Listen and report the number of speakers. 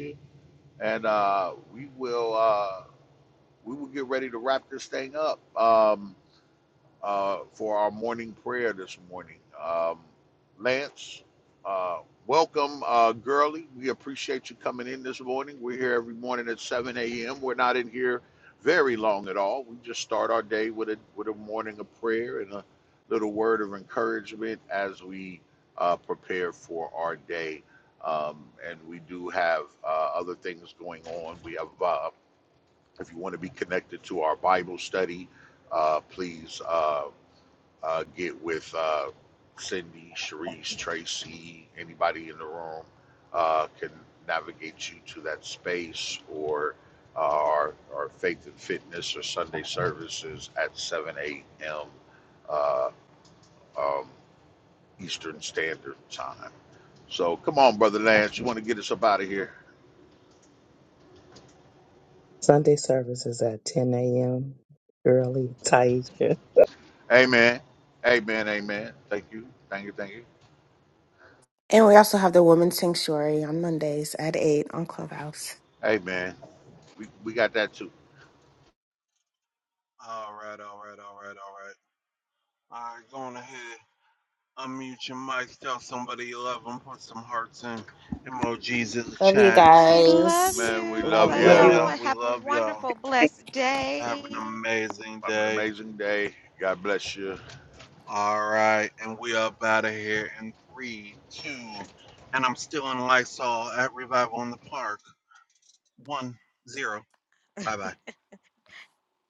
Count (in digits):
5